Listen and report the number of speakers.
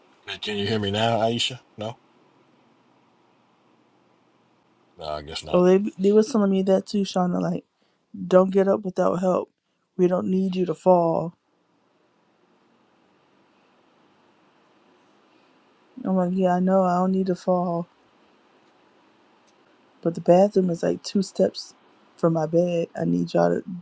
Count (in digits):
2